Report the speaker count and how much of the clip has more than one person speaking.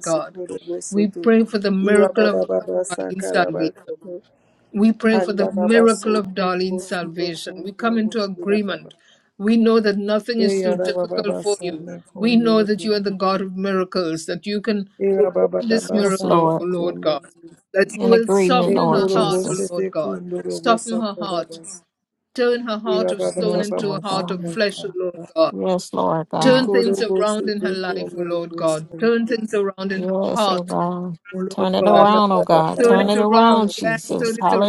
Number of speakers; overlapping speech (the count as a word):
three, about 66%